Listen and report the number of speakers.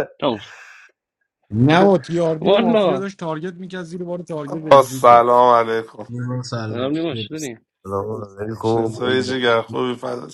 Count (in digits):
5